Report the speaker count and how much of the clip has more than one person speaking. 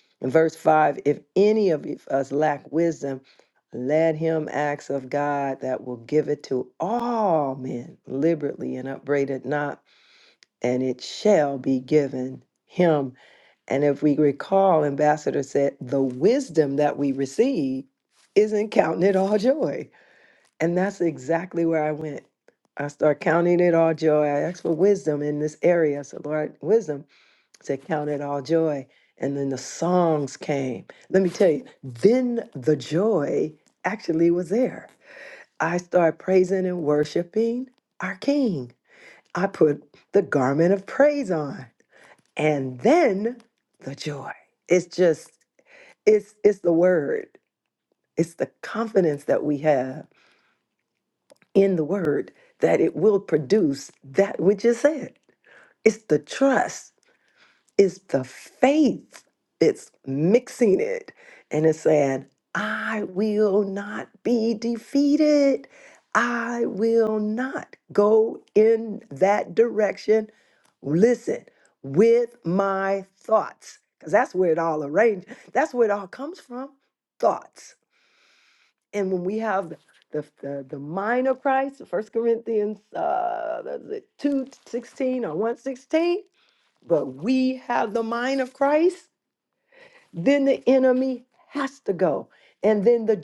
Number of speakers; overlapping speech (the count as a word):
one, no overlap